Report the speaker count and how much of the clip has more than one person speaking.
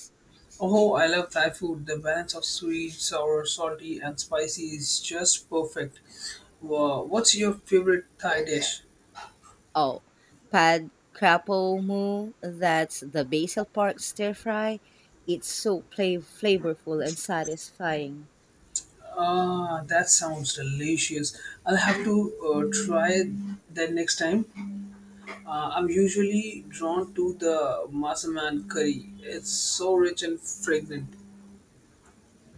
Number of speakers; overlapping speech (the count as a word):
two, no overlap